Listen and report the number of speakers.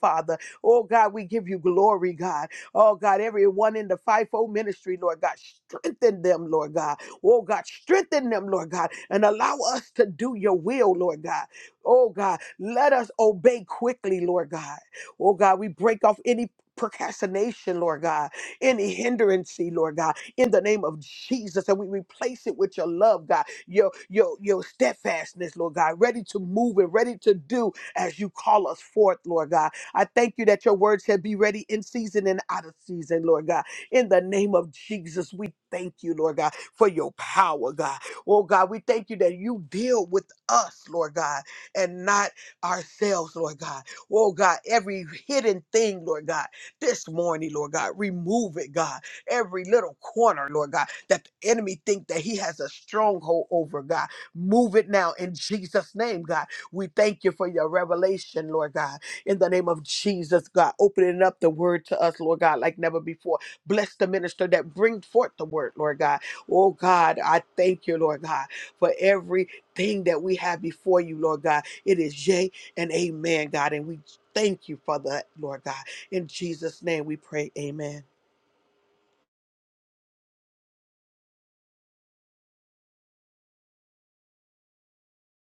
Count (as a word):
one